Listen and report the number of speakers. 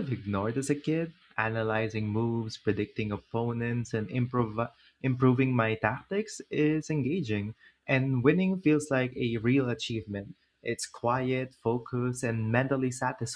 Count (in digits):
1